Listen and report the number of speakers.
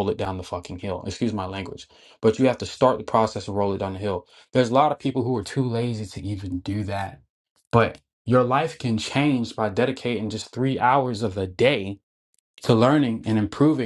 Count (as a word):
one